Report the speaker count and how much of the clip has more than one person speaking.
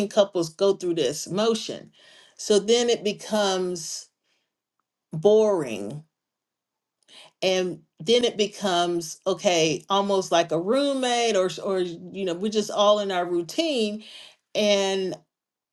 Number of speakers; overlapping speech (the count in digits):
1, no overlap